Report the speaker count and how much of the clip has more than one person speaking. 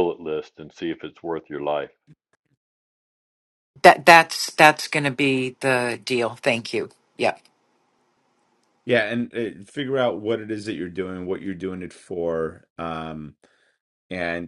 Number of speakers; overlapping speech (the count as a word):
three, no overlap